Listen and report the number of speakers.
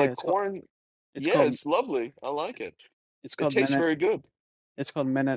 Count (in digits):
2